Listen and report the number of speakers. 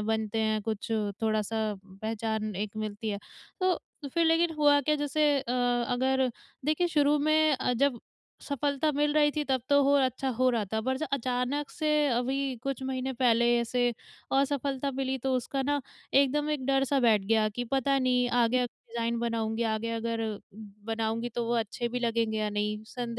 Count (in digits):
1